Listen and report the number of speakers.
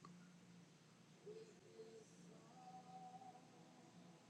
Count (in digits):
0